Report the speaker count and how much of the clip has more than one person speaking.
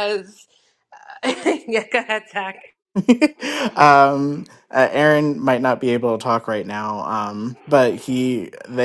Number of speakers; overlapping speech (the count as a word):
two, no overlap